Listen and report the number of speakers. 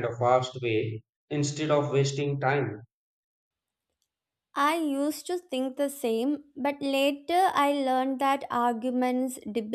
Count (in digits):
2